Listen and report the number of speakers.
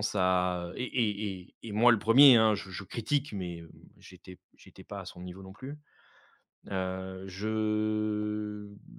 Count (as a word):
one